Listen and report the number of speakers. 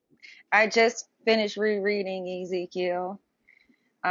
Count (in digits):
1